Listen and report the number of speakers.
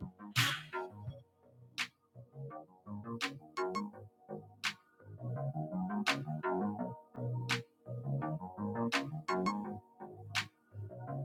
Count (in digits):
0